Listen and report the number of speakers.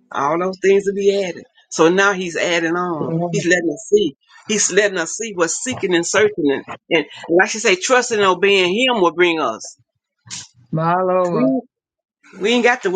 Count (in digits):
2